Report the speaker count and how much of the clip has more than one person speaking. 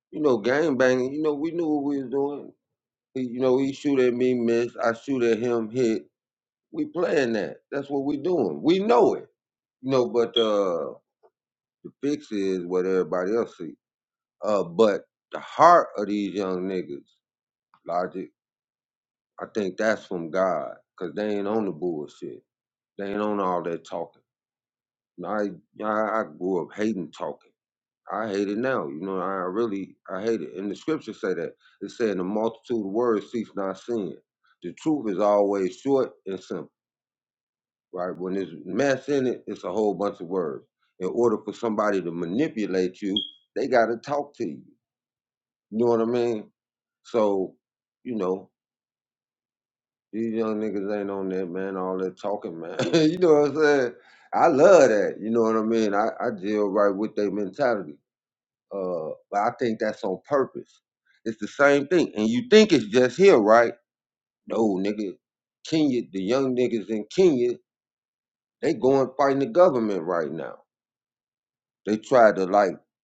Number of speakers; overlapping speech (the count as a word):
one, no overlap